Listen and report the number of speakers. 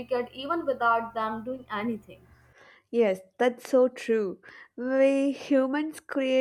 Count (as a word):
two